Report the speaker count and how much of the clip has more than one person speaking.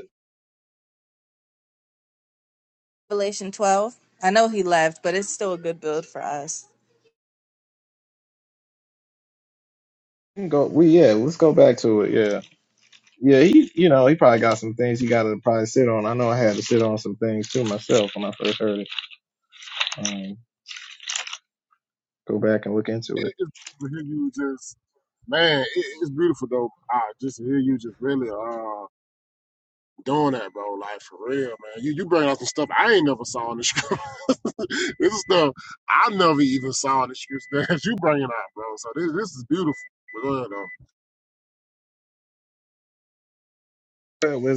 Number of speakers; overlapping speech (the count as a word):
three, under 1%